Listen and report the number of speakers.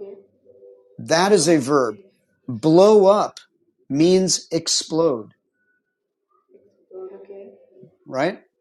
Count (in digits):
2